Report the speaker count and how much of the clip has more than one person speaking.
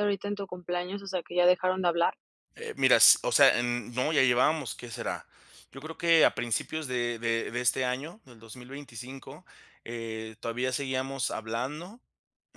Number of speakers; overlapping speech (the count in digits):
2, no overlap